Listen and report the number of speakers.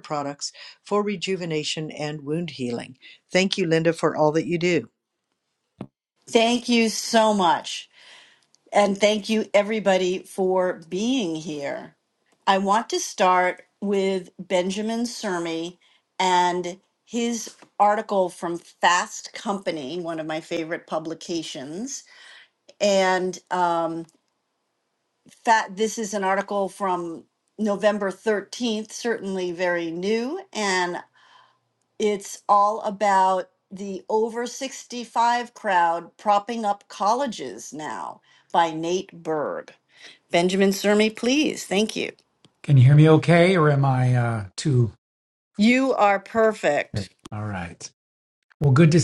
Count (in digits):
3